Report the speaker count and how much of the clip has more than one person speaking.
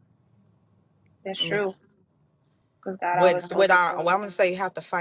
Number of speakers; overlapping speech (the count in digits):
2, about 25%